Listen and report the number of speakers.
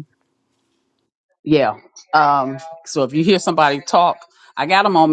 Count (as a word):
one